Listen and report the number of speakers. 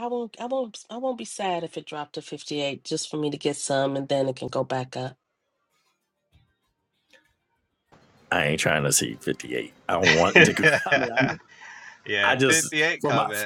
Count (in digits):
3